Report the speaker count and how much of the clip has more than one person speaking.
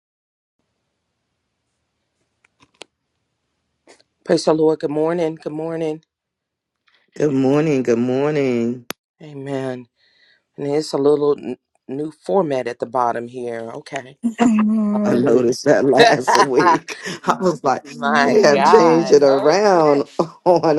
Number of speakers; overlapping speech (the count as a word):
three, about 14%